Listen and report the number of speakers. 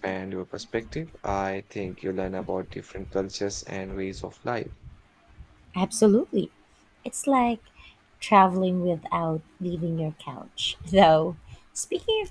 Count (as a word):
two